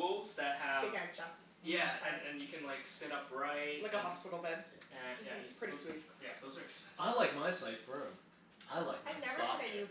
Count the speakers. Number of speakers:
four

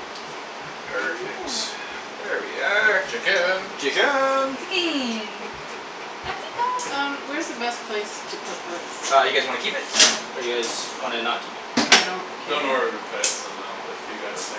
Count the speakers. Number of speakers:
four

